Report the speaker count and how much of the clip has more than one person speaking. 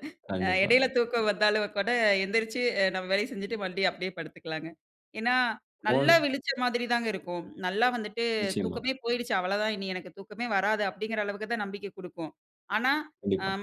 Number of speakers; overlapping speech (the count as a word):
two, about 6%